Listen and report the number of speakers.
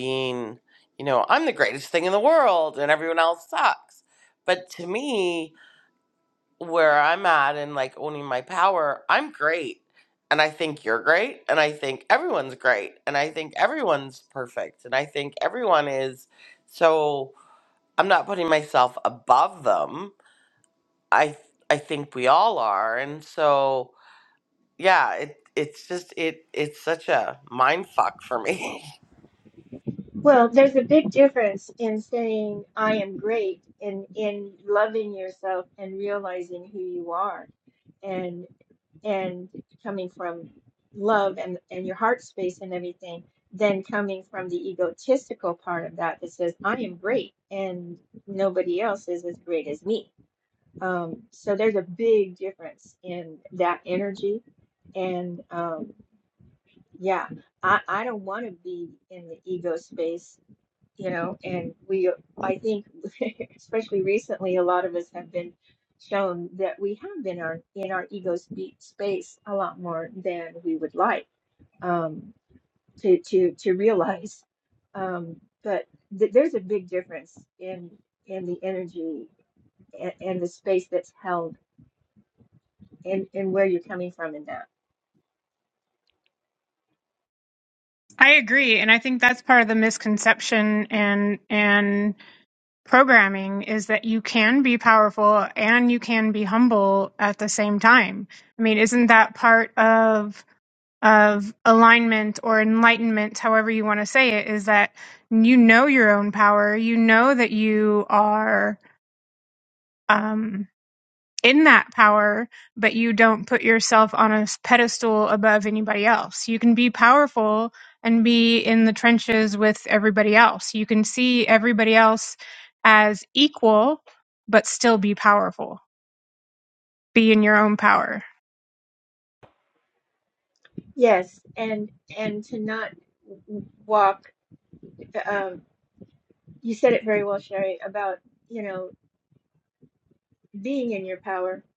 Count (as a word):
three